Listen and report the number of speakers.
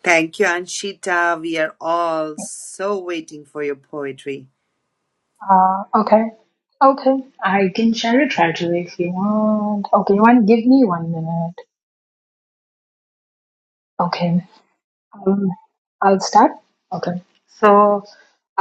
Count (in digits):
2